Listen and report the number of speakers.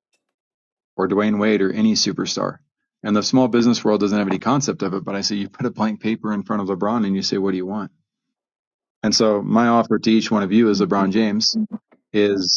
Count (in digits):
1